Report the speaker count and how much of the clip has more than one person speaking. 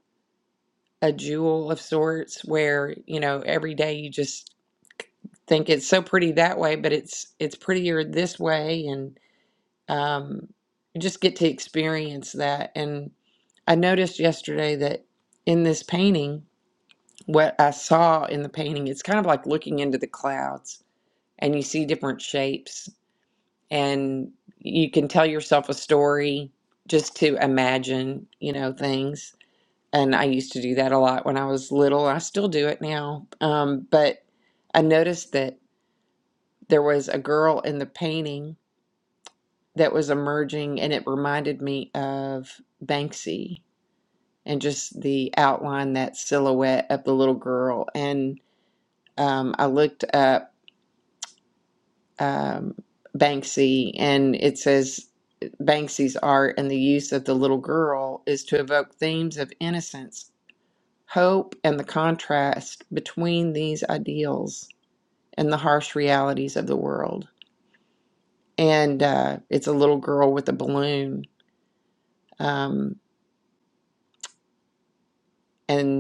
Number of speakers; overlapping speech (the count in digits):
1, no overlap